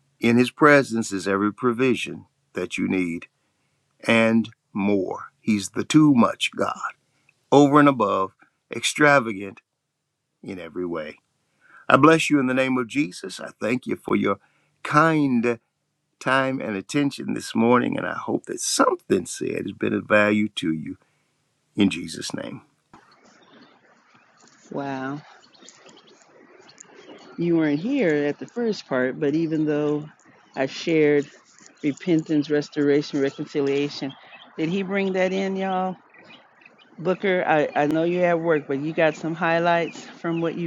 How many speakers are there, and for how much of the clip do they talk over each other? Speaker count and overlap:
2, no overlap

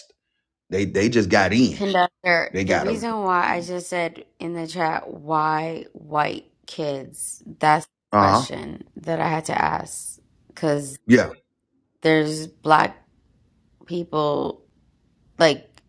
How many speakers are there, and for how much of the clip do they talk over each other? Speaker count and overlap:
2, about 5%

